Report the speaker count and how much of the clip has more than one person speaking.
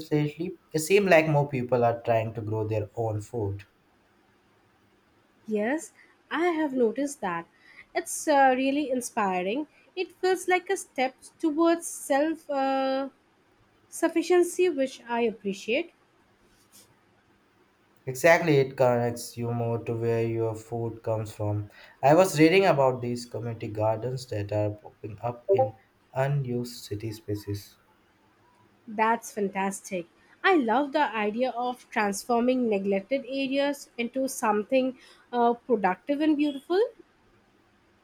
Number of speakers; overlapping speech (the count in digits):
2, no overlap